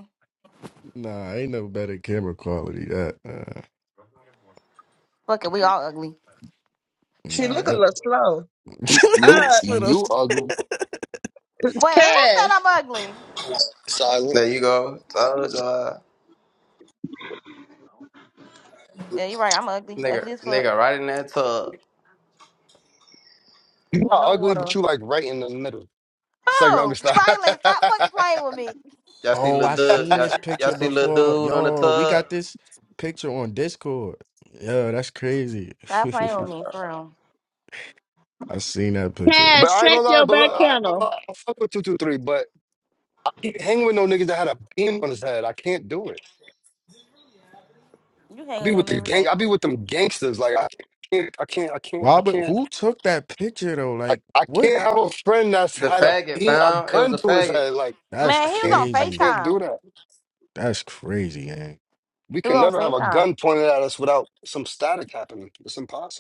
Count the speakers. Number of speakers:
five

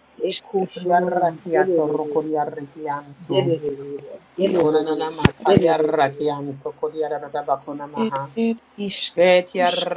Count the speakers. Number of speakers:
three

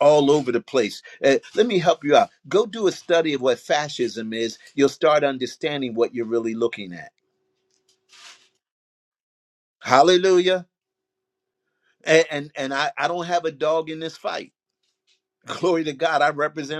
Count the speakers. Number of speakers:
one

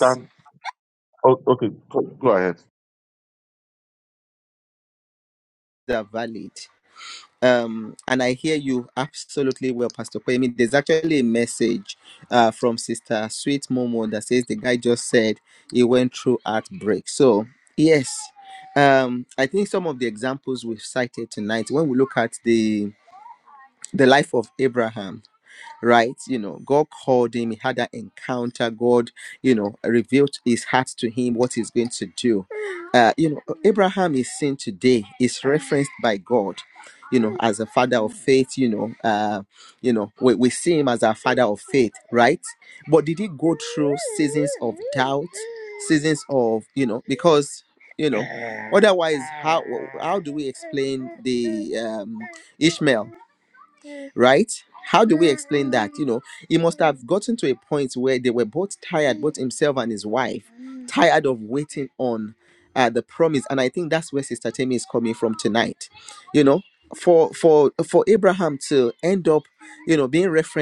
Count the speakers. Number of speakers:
two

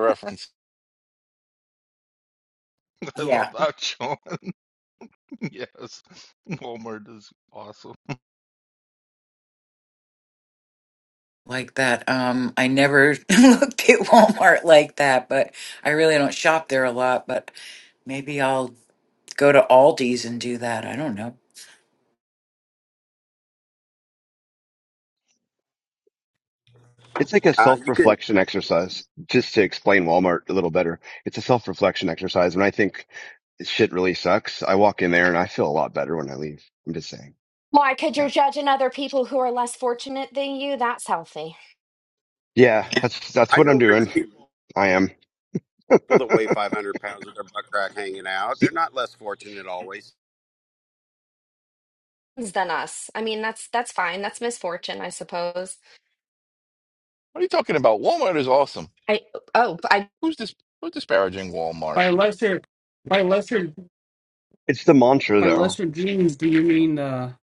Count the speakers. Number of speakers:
seven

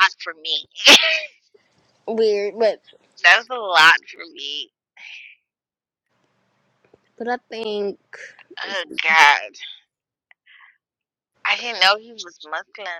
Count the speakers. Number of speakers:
two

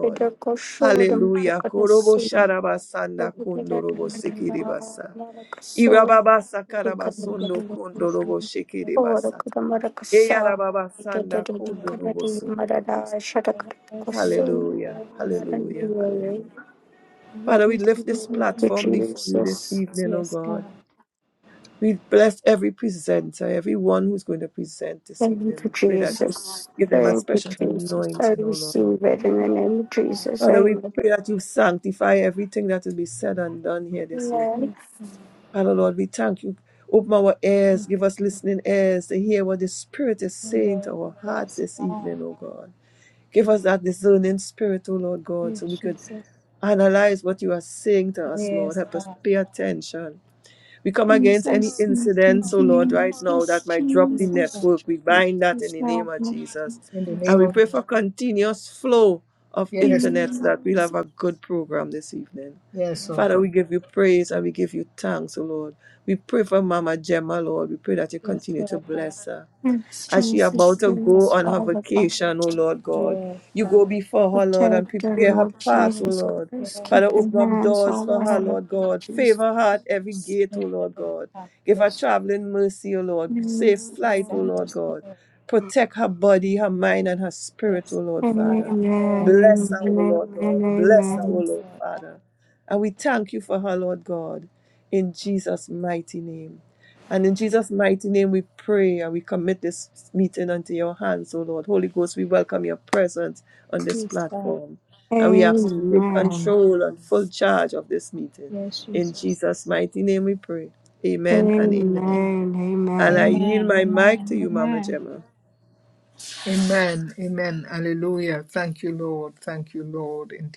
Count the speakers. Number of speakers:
four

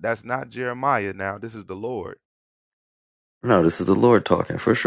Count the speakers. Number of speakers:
two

